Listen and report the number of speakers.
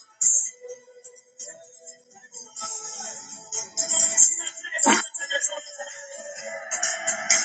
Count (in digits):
0